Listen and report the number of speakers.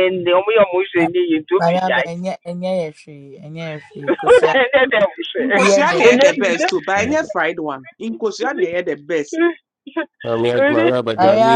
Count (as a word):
four